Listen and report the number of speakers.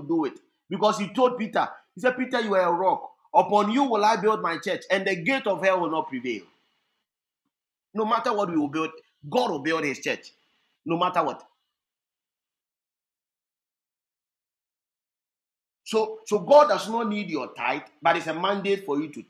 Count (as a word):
one